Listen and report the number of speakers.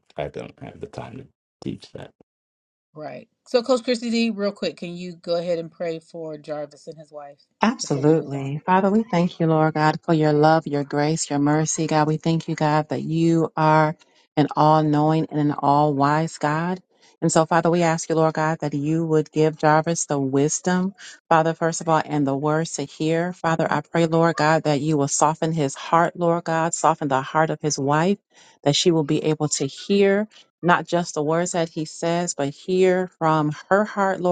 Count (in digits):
3